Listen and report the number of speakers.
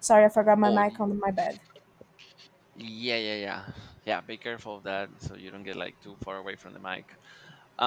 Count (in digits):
2